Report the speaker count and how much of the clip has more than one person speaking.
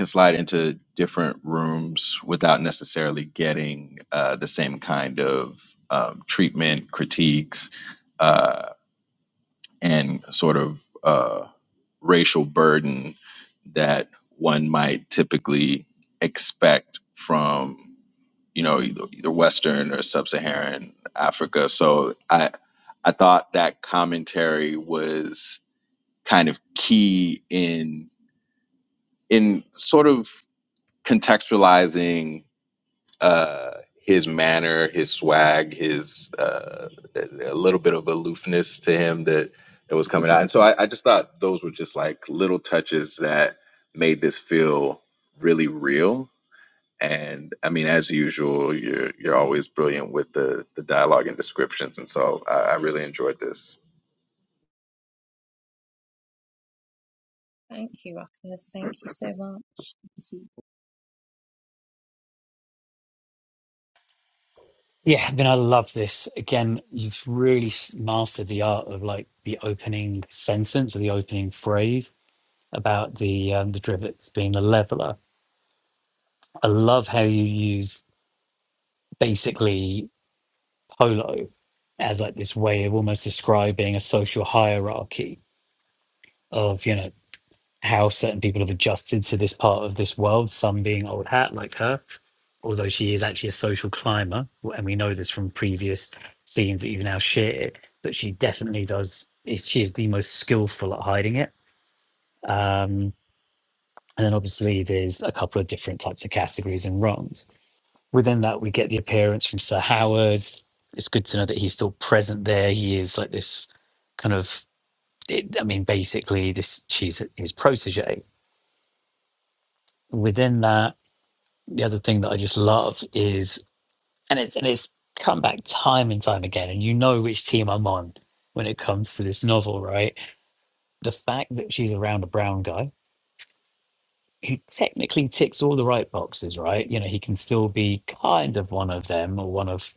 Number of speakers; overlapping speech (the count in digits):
3, no overlap